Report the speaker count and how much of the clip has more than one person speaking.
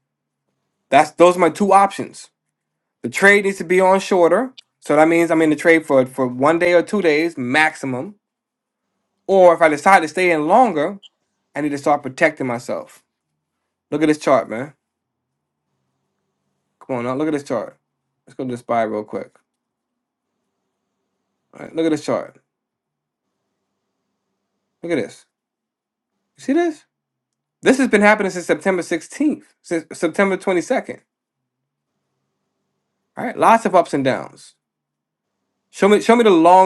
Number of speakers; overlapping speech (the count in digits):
1, no overlap